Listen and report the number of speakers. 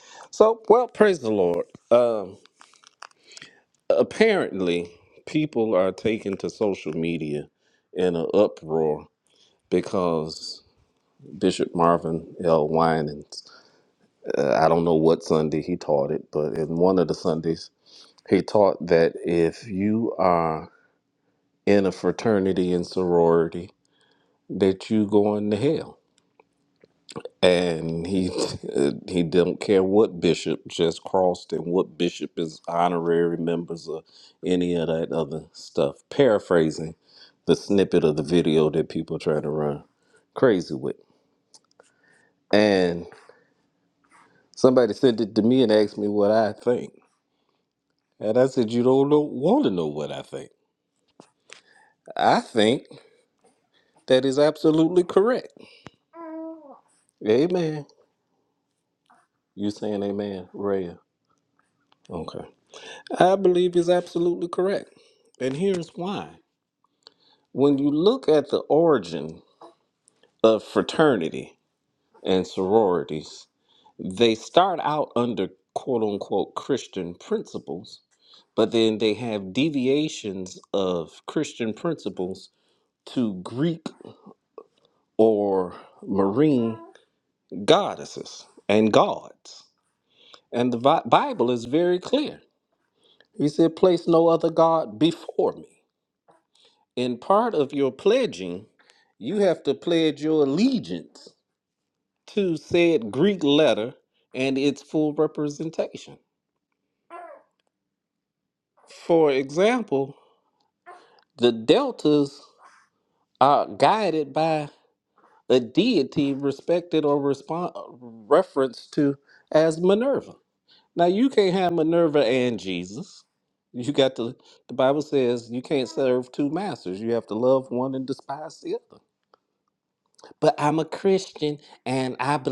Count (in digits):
1